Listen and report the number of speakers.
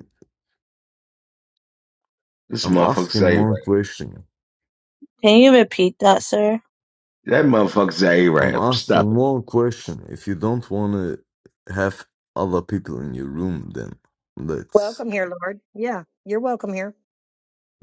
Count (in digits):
4